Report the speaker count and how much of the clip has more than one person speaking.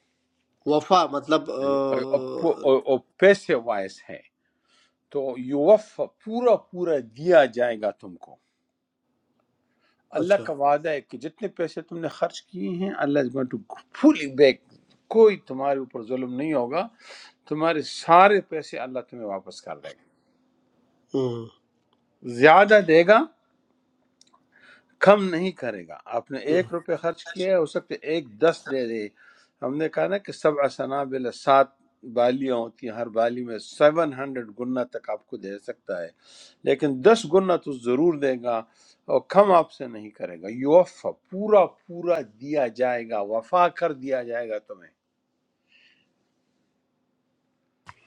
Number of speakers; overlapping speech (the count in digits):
2, about 1%